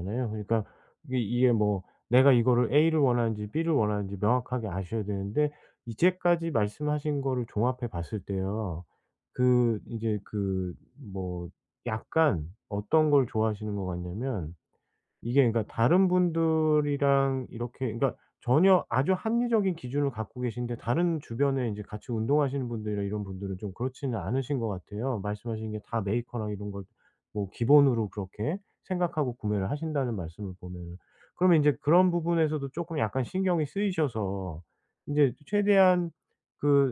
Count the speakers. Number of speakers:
one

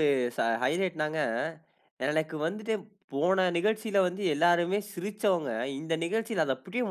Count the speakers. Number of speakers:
one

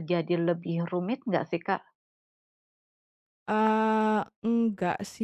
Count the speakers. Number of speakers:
two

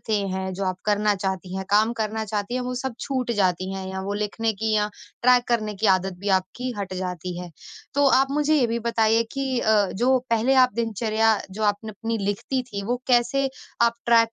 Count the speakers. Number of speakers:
one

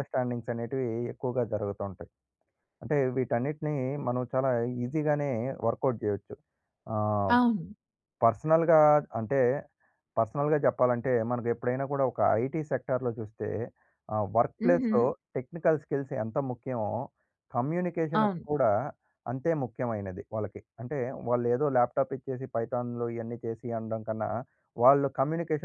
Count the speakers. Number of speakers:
two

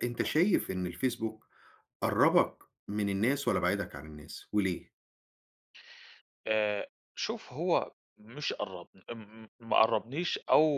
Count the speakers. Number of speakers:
two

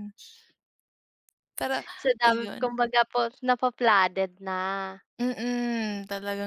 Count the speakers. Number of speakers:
two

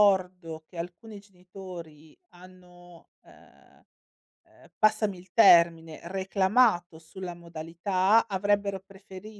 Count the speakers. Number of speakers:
one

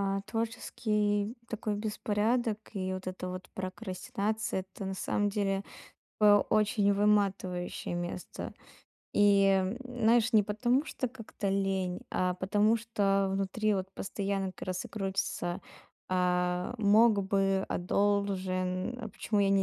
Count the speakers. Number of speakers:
one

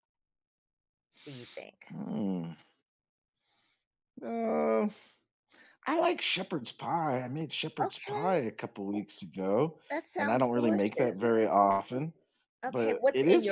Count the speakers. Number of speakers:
two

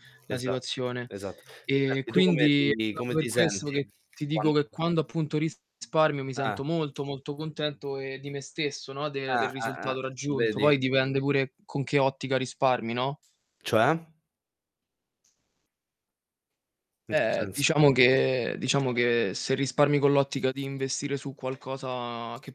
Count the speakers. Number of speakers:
two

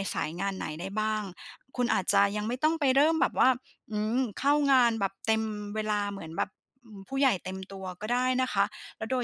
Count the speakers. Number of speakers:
one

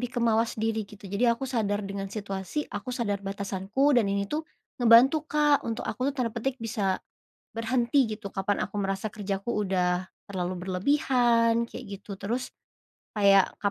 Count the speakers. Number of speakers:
one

